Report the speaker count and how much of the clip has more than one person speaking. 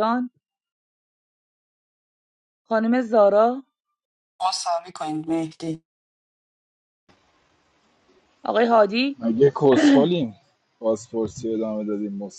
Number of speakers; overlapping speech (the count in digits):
3, no overlap